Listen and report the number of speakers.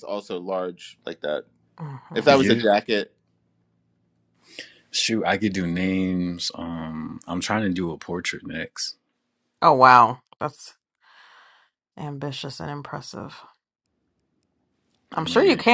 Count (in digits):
3